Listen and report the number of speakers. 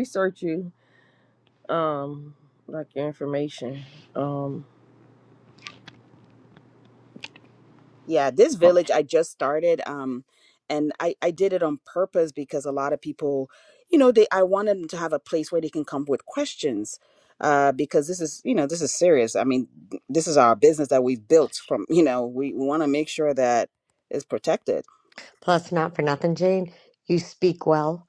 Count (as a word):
three